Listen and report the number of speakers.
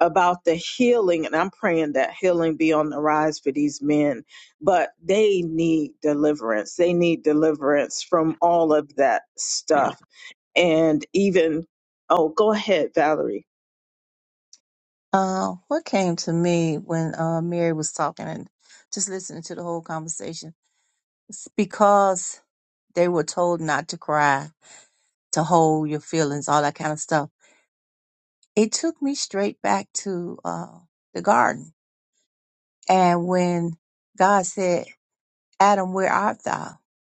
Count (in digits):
2